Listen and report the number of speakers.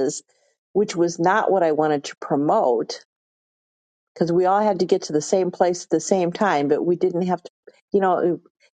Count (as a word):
one